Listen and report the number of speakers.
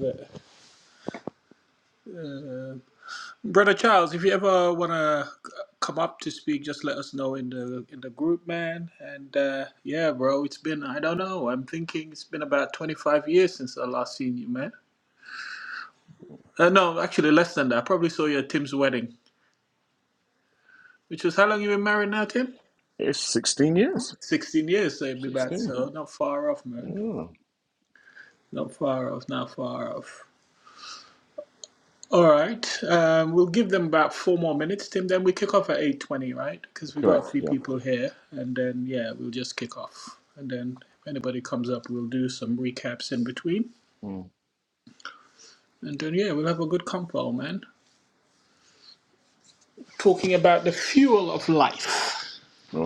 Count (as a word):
two